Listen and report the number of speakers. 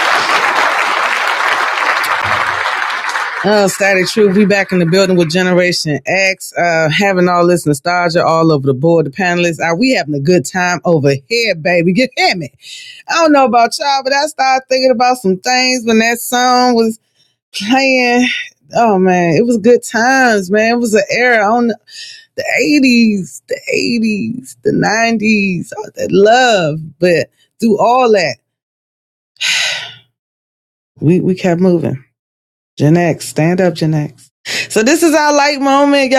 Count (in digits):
1